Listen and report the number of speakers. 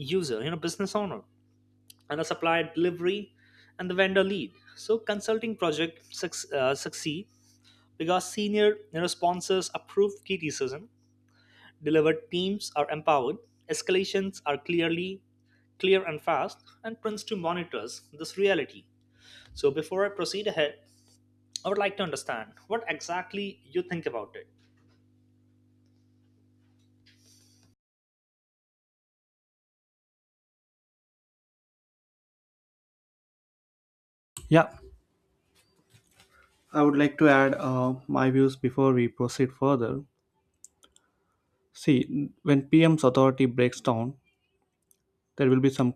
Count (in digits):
2